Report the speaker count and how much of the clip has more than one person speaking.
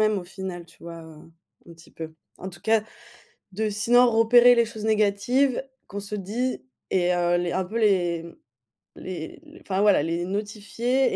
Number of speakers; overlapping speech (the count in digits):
1, no overlap